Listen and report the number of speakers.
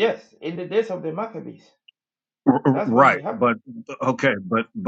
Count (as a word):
two